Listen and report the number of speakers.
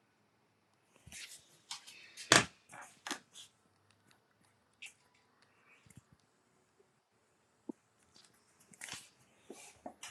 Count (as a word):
zero